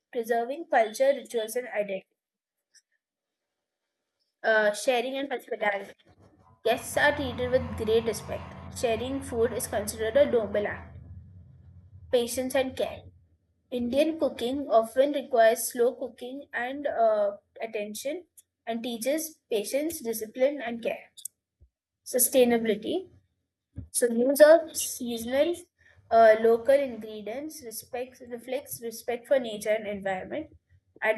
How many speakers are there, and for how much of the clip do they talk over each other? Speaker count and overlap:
1, no overlap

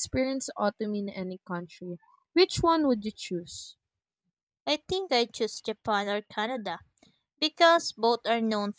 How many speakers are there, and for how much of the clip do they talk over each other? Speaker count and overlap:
2, no overlap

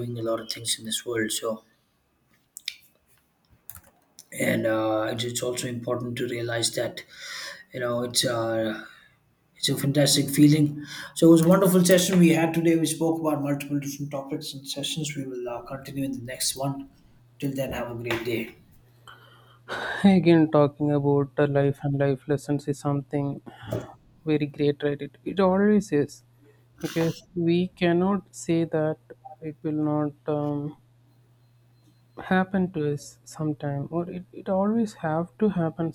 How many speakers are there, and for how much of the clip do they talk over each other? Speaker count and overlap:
2, no overlap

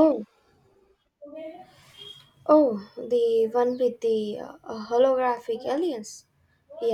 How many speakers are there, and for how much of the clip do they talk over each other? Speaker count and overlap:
1, no overlap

